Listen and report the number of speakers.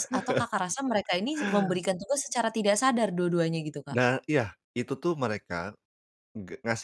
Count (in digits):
2